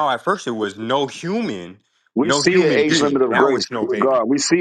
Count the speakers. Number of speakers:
2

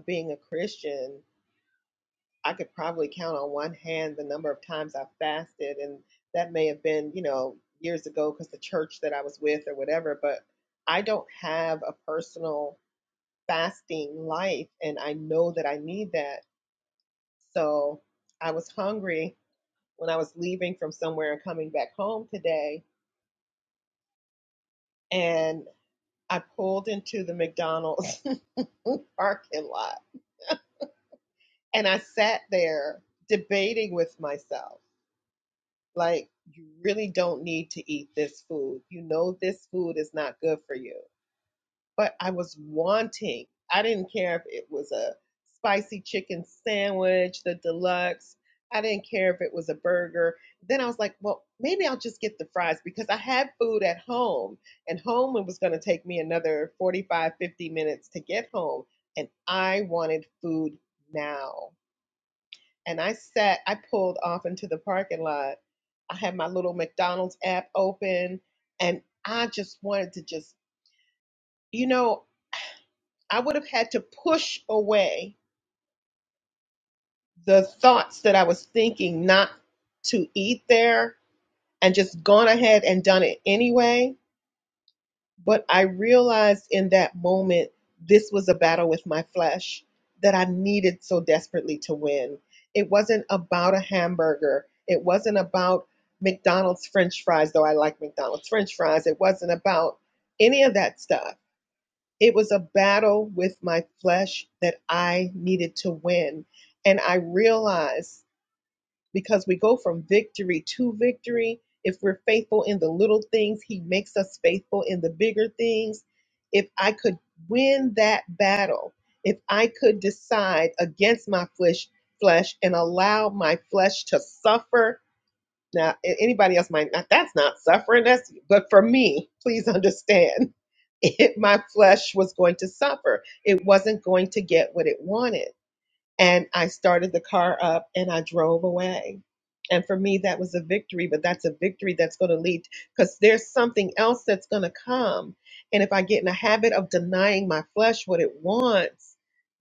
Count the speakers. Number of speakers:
1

